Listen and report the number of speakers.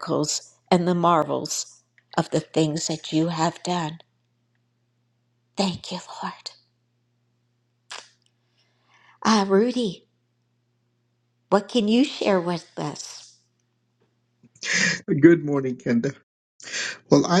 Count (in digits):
2